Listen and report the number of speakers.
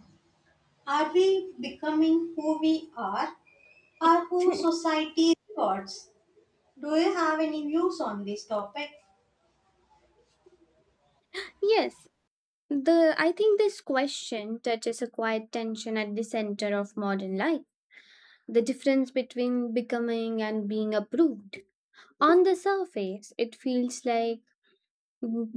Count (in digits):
2